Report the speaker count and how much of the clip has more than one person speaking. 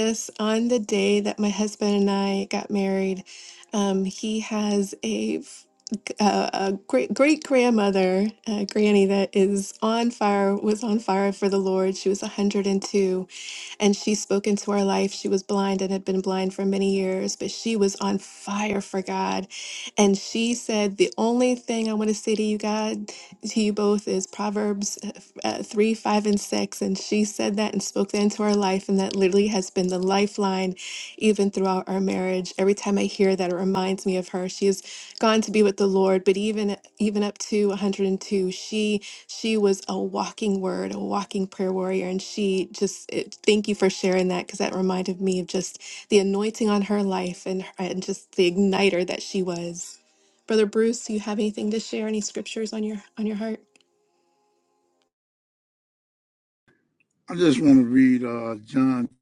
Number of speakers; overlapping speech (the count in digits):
2, no overlap